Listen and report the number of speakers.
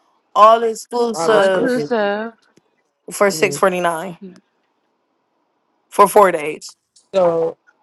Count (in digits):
3